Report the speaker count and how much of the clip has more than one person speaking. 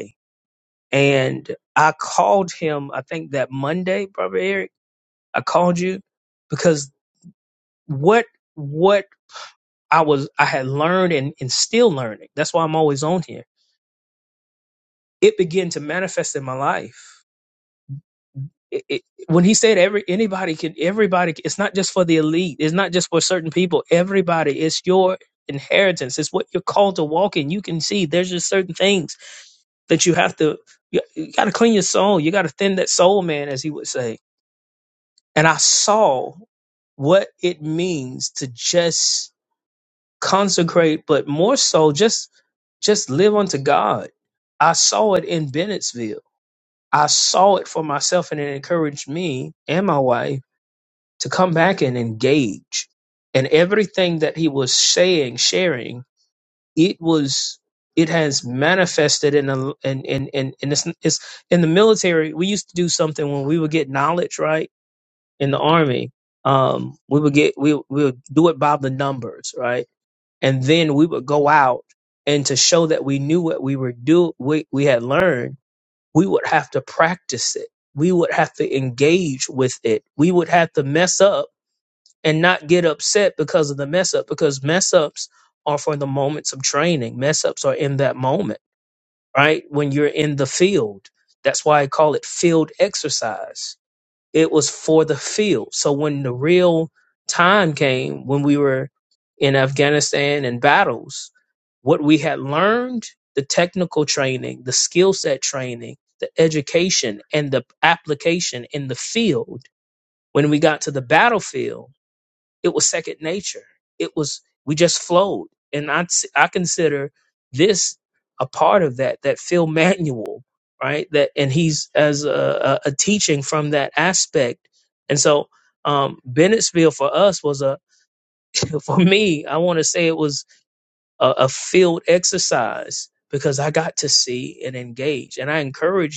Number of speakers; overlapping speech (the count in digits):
1, no overlap